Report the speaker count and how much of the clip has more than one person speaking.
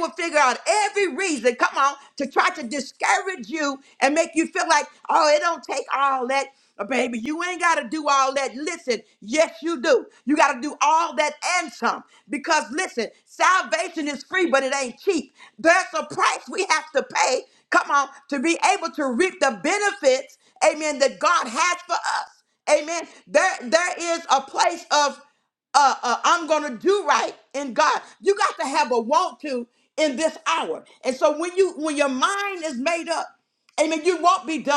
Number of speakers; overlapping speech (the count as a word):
one, no overlap